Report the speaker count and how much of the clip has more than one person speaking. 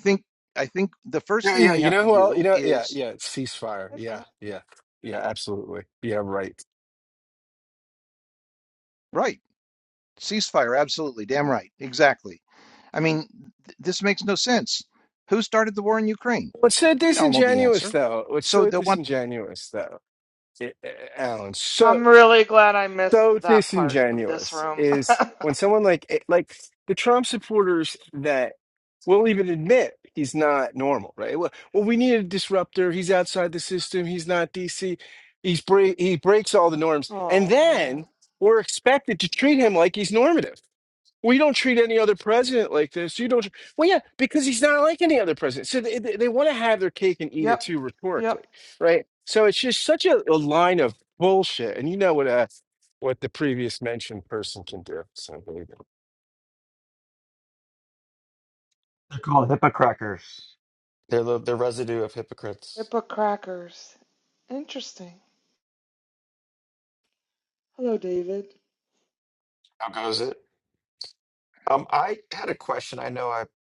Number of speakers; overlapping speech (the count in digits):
4, about 8%